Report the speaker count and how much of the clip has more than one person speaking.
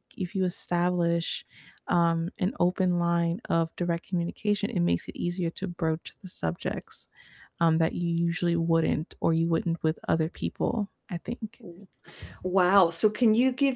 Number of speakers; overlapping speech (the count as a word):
two, no overlap